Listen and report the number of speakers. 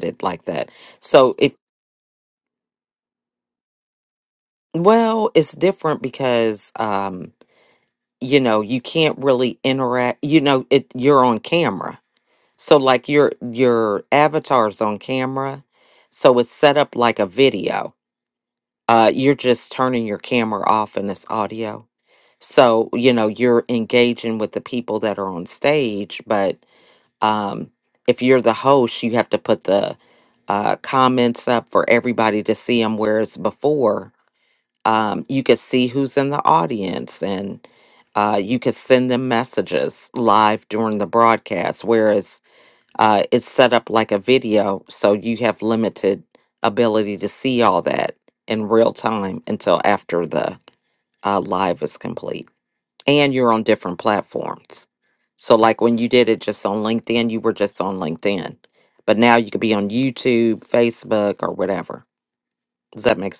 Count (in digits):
1